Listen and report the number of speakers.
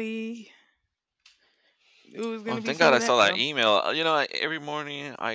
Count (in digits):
2